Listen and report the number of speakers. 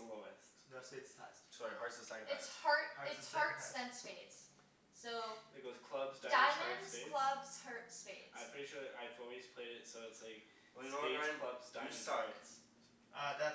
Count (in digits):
4